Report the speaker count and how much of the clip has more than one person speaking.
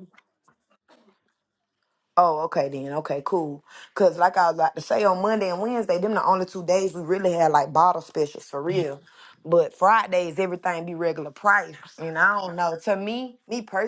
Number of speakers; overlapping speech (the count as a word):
one, no overlap